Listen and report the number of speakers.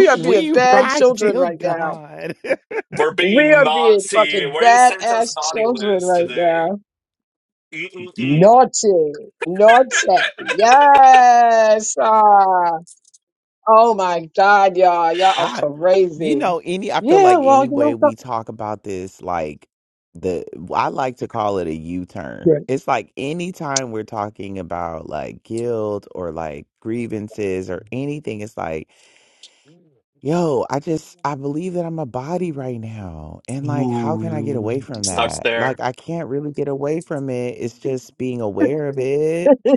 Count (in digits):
3